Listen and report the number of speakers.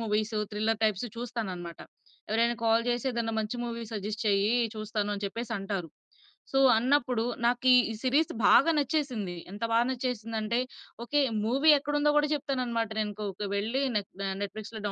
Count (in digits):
1